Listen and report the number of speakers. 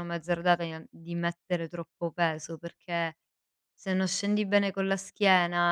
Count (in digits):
1